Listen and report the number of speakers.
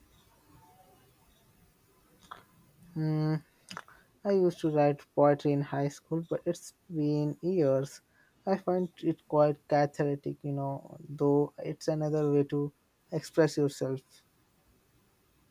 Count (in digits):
1